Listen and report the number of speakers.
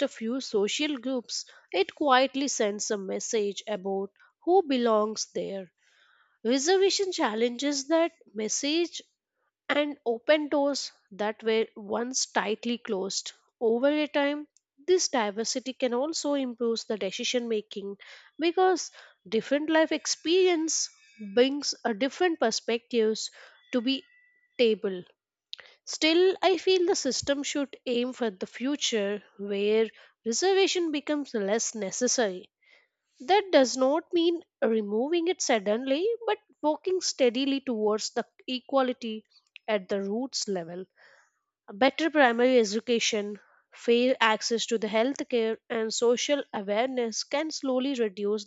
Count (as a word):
one